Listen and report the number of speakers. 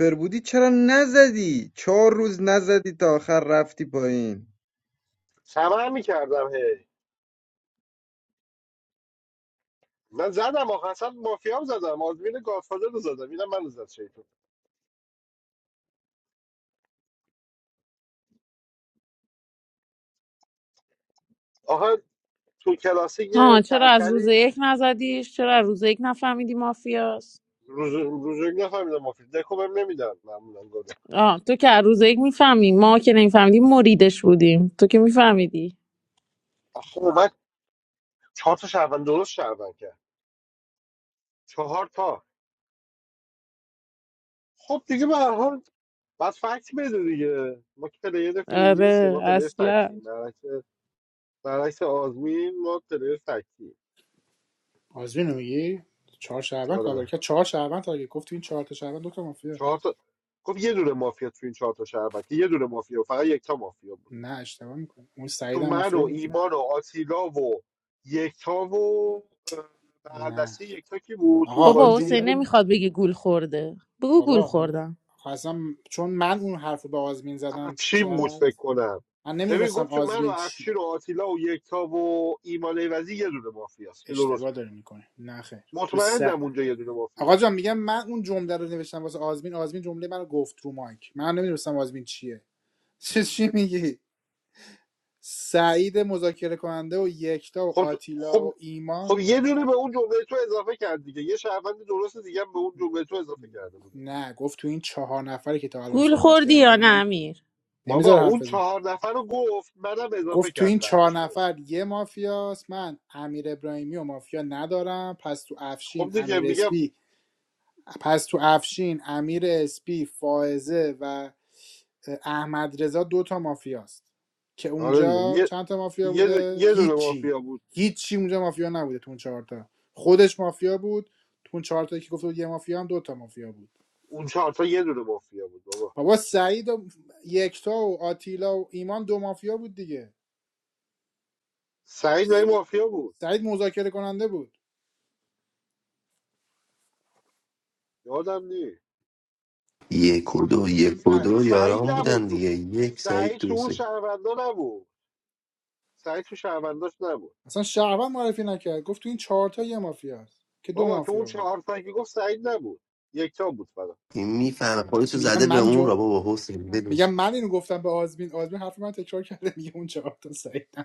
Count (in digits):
5